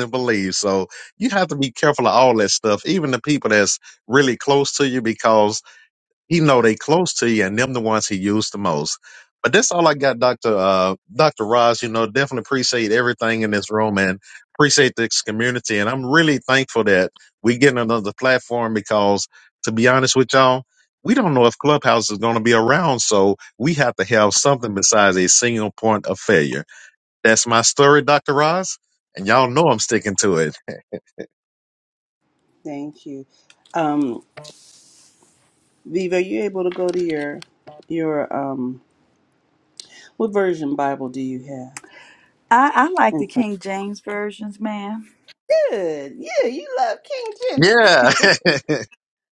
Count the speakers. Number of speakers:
3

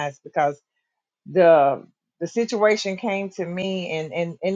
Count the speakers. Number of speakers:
1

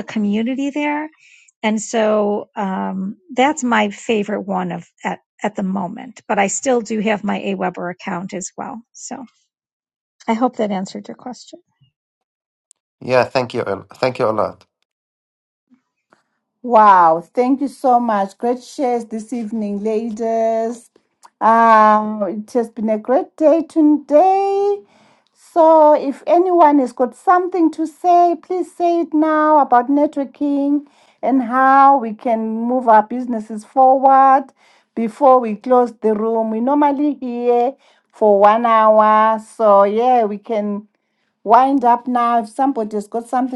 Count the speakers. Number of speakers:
3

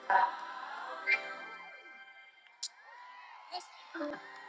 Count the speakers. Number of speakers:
0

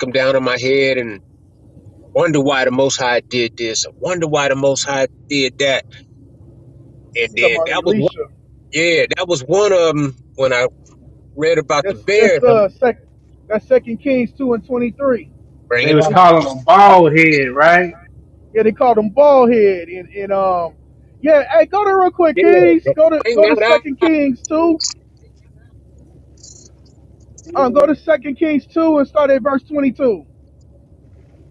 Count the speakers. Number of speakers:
3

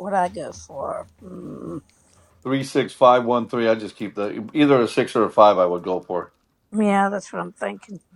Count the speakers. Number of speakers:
2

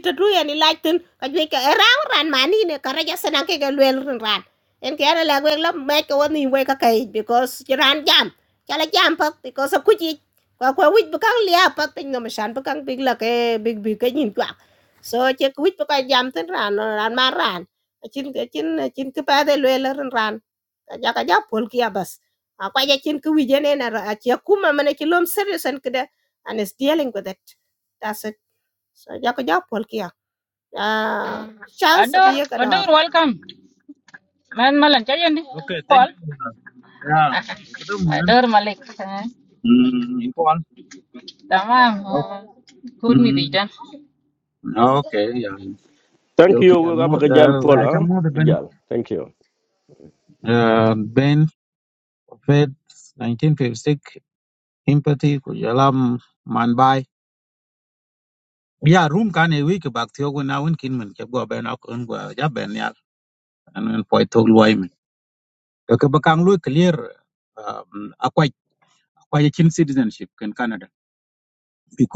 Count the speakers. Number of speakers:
4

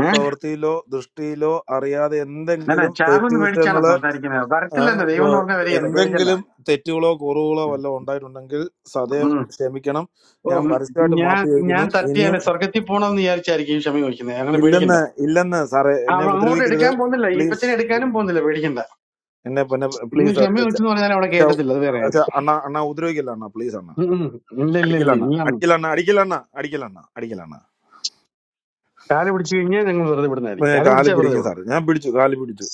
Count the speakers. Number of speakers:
2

